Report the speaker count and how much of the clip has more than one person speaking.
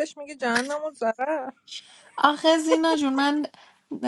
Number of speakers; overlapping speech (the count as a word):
two, no overlap